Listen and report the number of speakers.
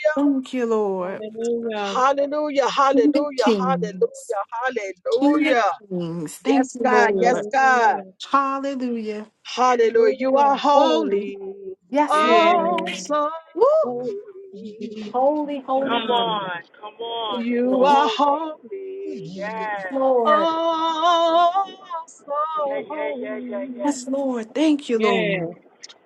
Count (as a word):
four